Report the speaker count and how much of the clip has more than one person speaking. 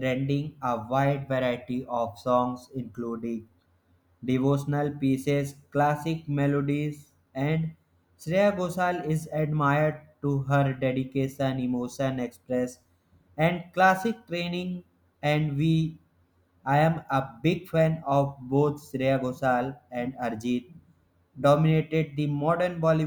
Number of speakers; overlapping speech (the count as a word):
one, no overlap